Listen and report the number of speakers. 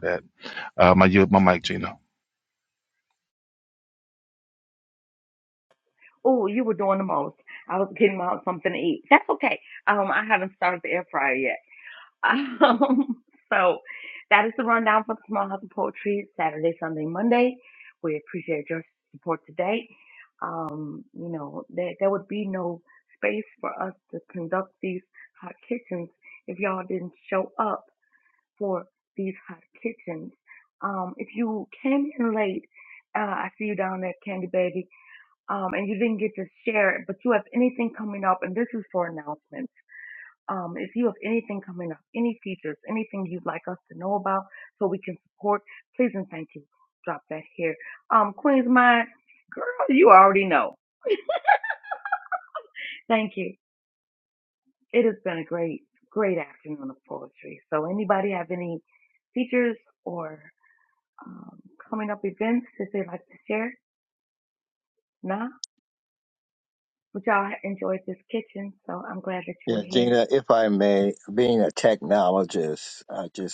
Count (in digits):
3